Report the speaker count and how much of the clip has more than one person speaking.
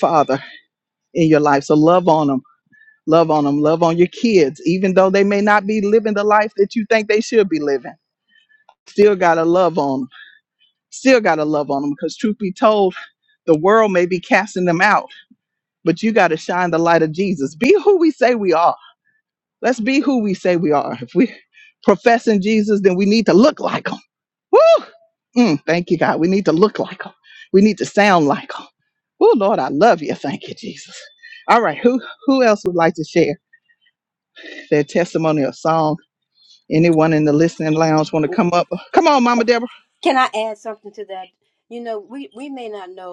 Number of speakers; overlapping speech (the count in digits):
2, no overlap